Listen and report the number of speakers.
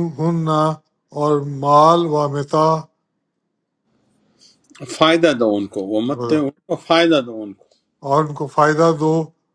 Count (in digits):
2